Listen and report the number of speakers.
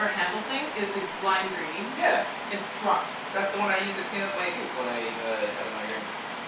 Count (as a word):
two